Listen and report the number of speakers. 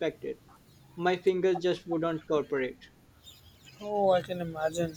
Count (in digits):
2